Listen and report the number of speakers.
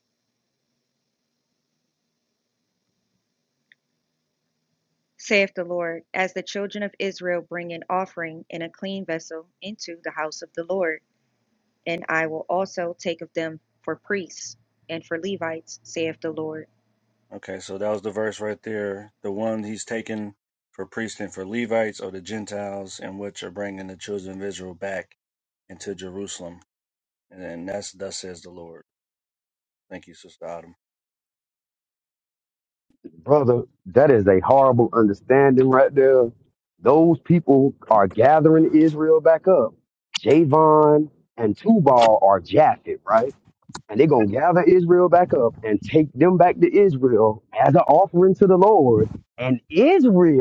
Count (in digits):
3